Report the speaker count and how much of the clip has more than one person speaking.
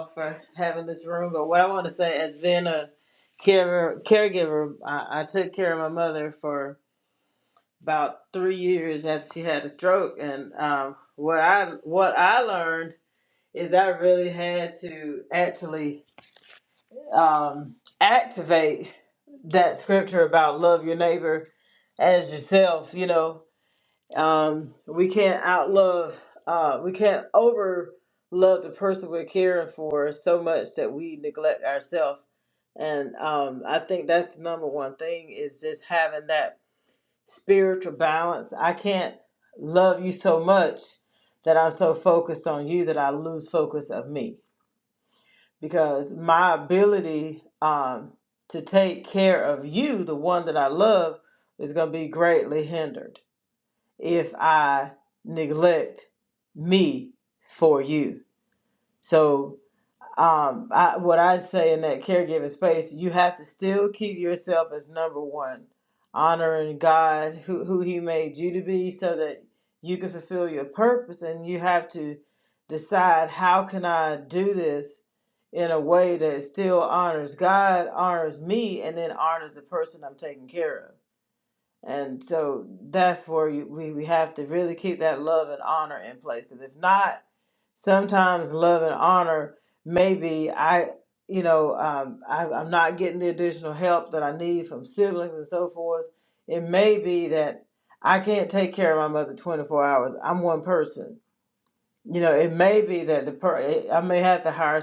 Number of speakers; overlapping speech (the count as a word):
one, no overlap